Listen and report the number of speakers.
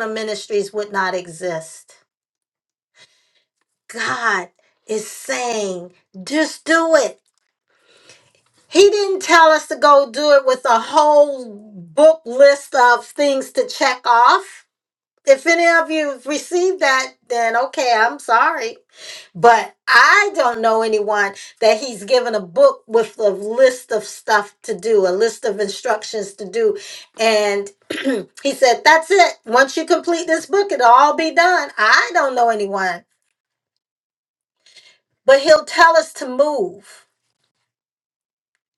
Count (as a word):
one